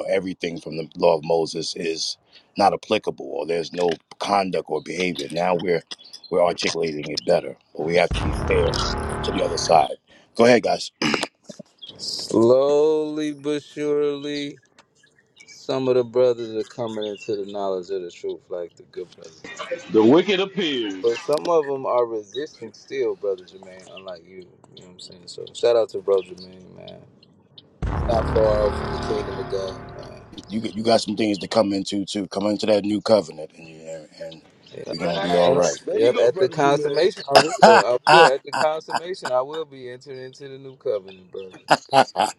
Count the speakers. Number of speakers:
3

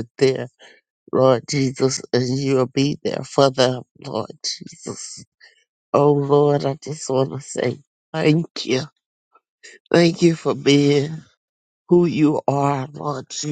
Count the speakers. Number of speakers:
1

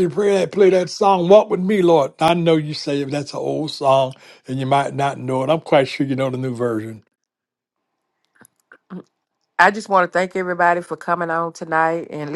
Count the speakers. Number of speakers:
2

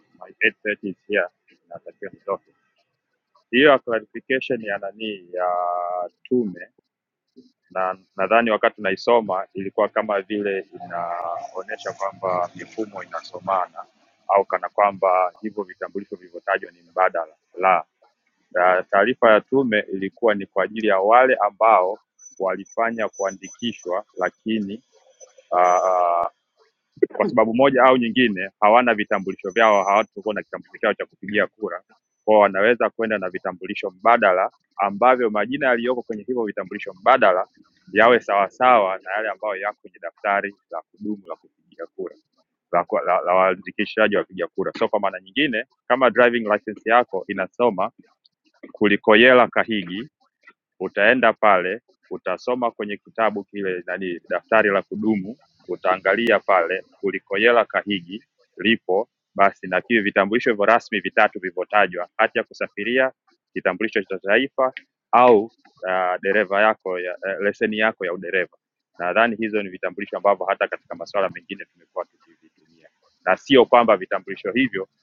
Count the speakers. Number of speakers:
1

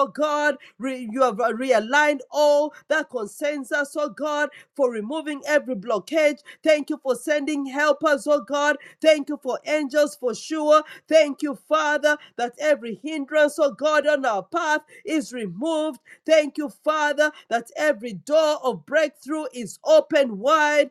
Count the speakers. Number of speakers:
1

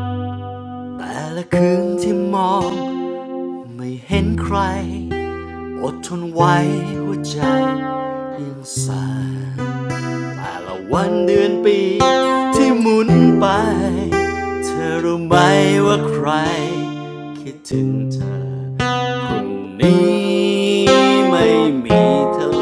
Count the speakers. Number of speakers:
1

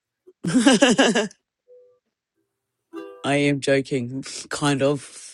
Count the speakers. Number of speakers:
1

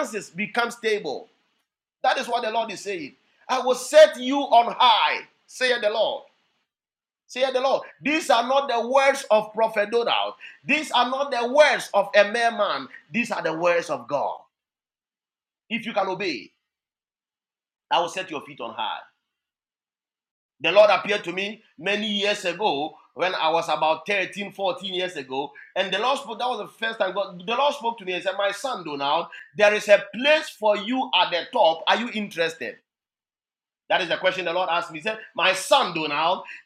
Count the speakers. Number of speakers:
1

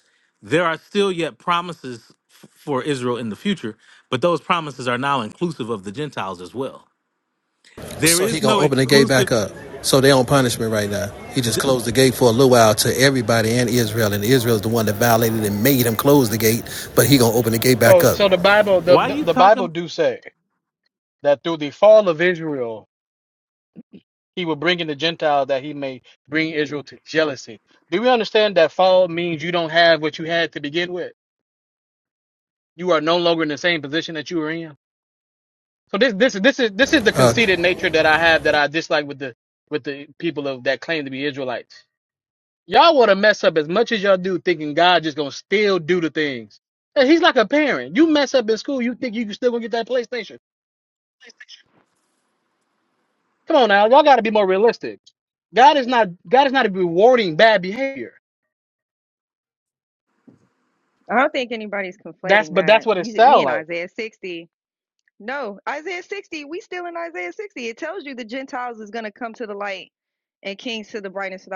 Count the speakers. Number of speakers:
4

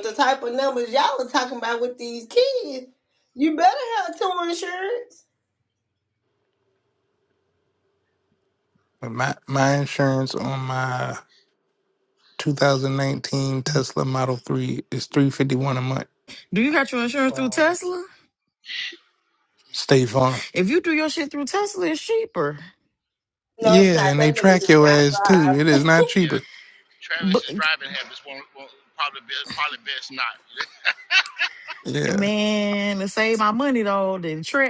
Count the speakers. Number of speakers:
4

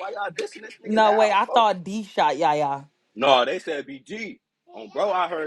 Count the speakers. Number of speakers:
2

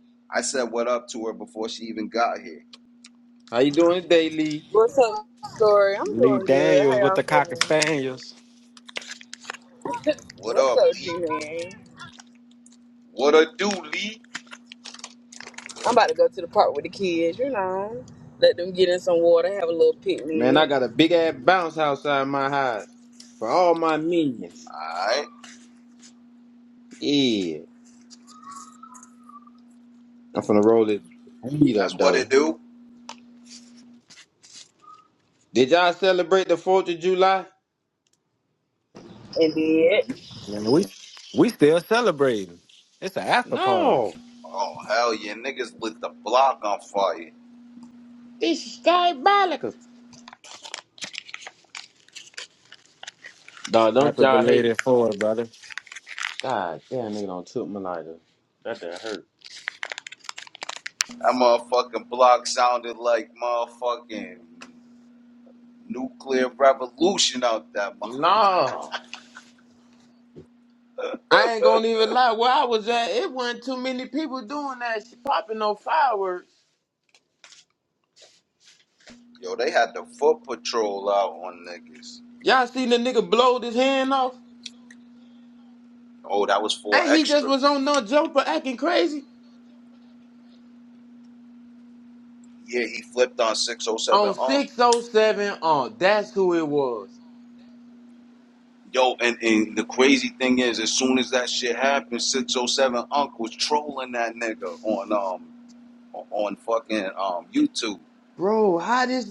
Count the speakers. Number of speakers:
4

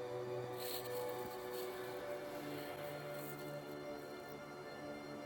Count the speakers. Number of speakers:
0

